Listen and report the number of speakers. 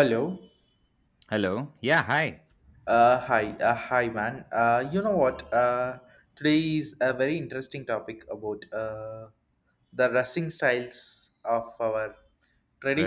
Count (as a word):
two